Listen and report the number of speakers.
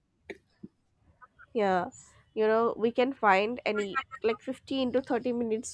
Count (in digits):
1